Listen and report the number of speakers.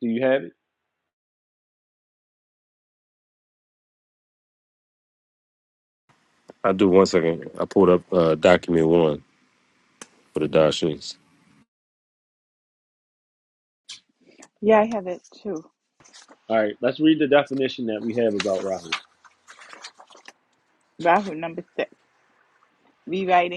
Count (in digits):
3